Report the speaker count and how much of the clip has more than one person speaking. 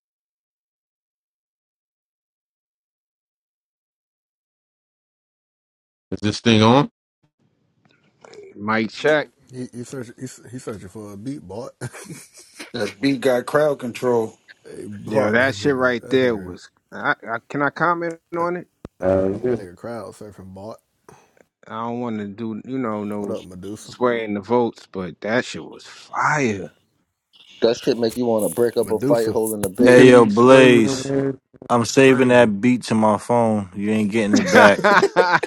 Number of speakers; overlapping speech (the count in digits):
6, about 12%